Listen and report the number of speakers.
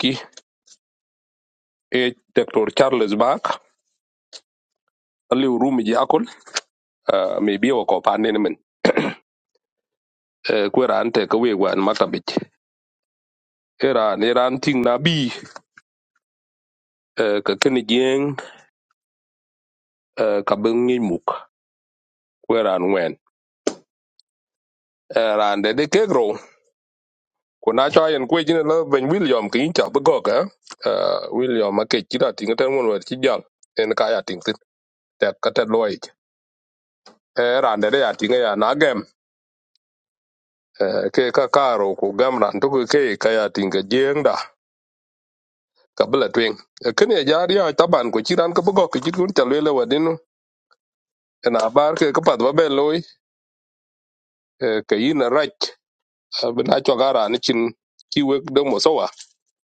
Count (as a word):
one